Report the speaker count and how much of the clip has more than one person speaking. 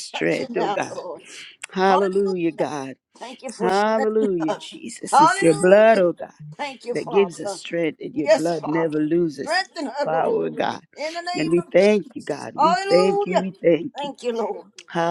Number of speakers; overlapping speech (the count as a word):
two, about 49%